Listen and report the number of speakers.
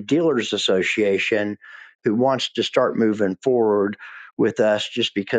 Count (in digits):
1